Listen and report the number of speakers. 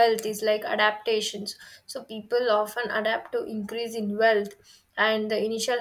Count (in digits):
1